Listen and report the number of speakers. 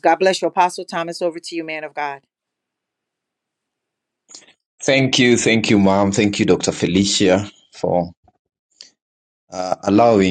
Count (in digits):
2